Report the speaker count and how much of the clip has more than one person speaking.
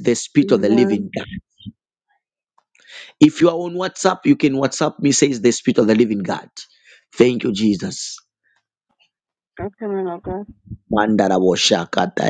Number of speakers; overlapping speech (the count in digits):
2, about 5%